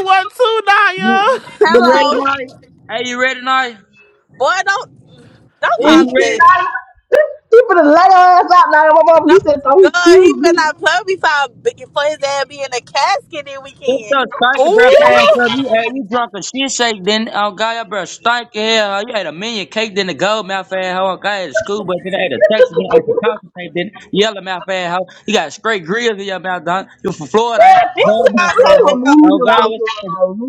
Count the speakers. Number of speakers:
four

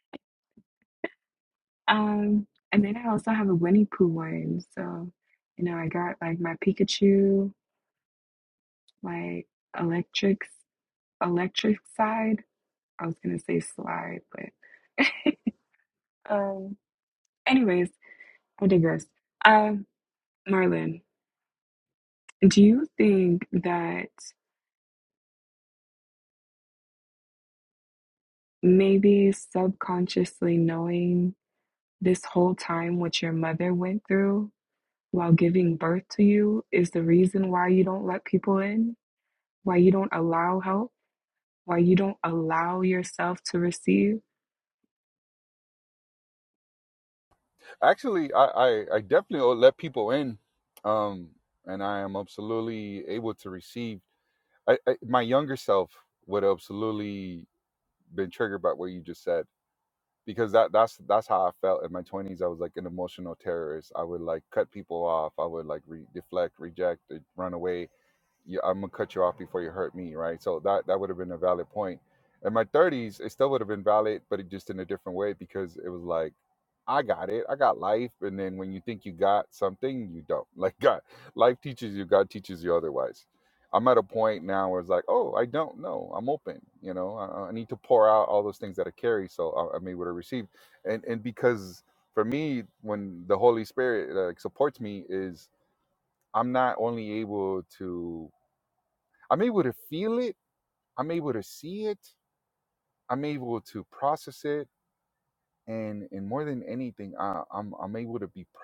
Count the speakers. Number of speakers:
two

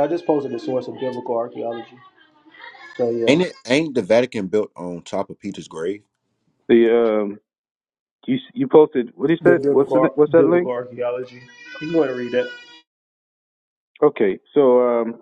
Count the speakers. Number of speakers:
three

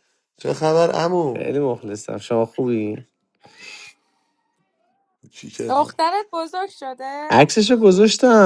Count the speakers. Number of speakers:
three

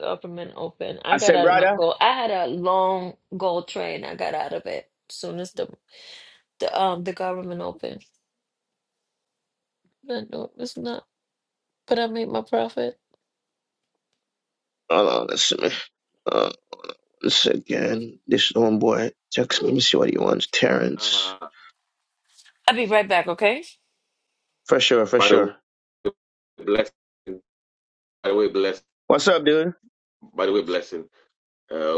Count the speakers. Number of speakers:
three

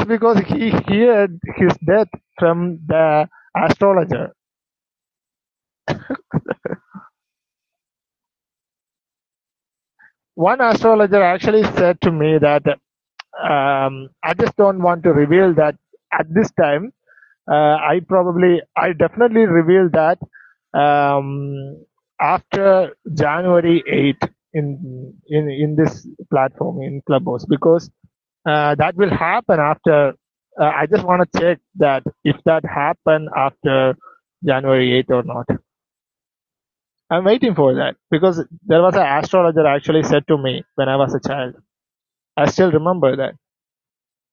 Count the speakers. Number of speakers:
one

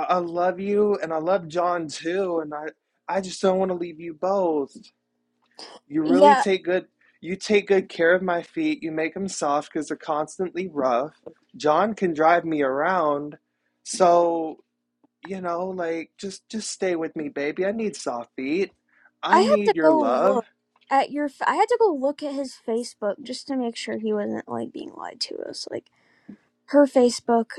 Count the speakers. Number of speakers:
two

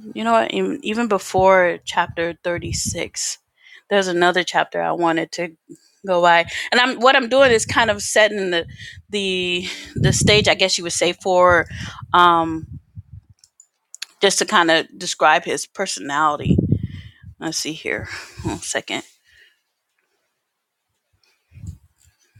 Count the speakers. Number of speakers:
one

